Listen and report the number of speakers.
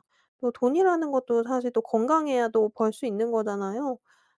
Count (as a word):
one